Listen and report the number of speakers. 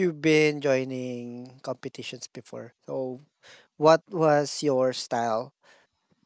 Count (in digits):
1